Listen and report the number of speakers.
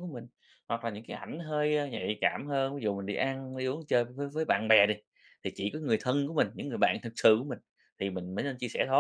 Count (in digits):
1